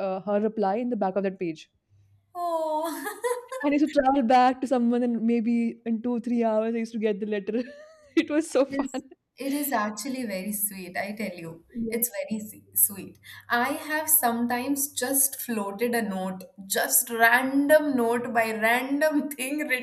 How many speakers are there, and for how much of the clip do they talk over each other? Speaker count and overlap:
2, about 2%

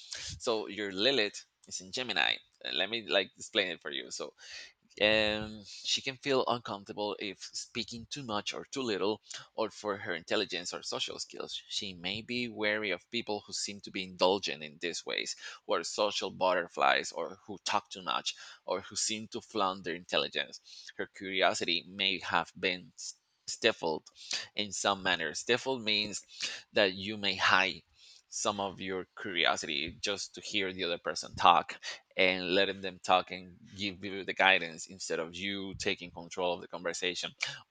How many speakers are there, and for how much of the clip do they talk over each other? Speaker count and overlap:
1, no overlap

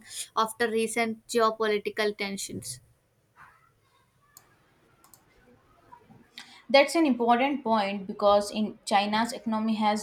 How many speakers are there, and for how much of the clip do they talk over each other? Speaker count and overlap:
2, no overlap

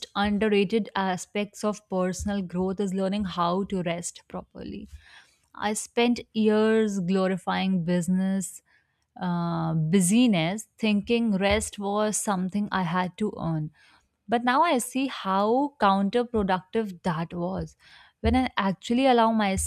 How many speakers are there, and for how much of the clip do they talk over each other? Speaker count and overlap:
1, no overlap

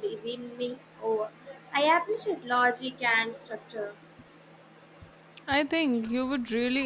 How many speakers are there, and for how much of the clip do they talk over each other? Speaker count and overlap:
2, no overlap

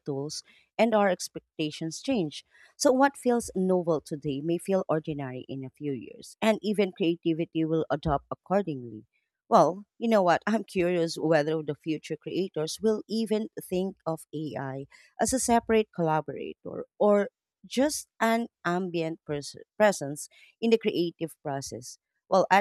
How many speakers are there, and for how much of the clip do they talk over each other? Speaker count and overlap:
1, no overlap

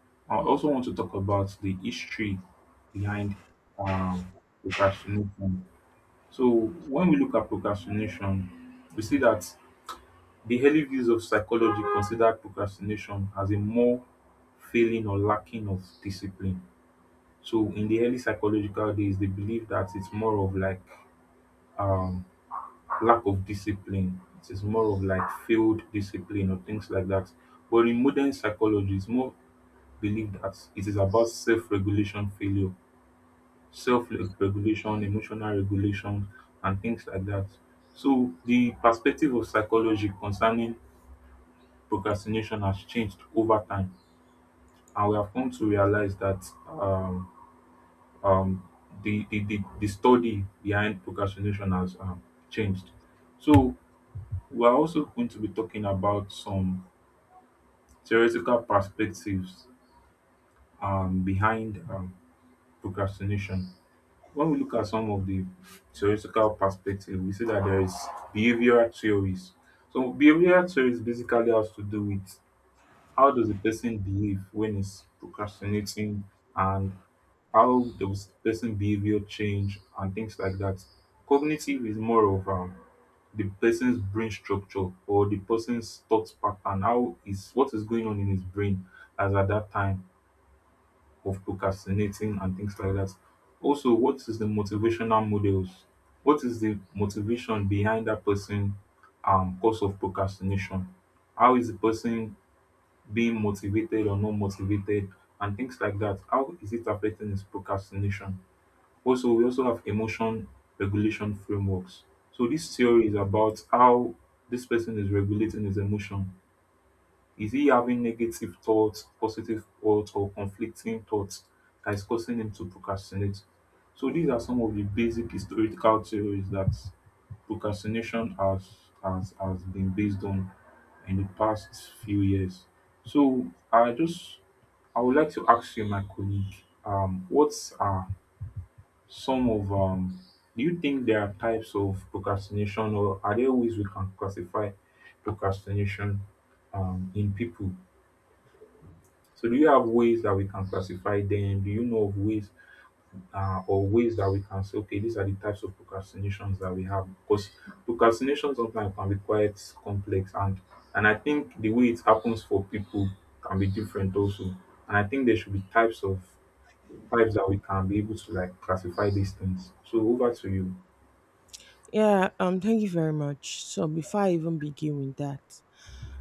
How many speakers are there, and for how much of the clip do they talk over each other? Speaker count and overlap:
2, no overlap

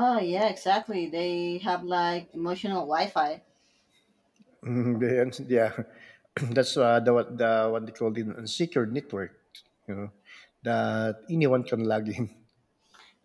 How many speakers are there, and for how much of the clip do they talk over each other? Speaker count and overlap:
2, no overlap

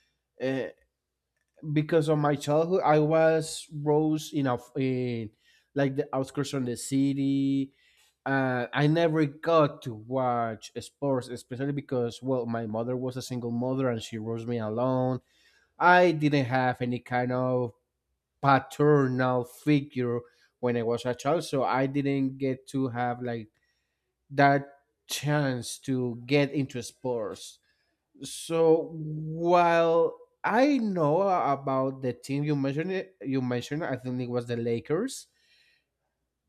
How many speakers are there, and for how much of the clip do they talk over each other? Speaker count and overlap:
1, no overlap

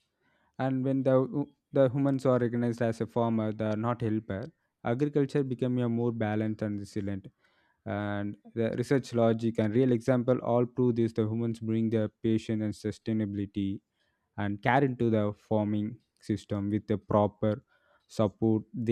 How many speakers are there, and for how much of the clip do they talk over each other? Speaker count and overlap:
1, no overlap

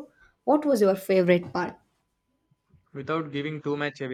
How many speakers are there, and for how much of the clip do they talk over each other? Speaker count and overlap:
2, no overlap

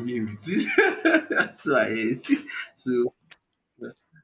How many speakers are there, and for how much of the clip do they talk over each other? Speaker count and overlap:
1, no overlap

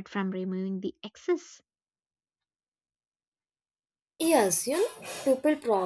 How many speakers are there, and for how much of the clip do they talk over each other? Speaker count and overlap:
2, no overlap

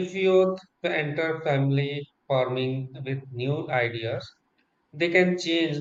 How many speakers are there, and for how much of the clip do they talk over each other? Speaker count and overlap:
1, no overlap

